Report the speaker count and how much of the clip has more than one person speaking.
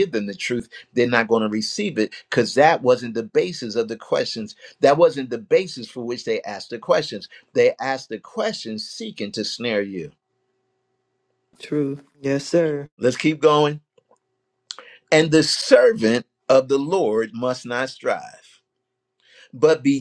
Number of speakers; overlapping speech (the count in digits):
2, no overlap